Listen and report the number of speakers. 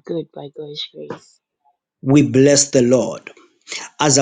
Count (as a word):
two